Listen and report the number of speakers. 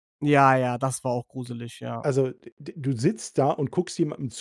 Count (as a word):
two